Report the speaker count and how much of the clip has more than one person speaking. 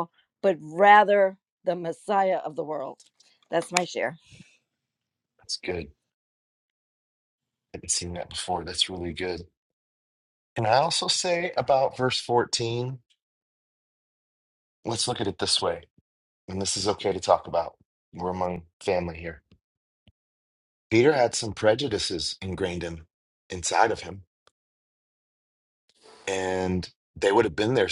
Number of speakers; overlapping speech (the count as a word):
two, no overlap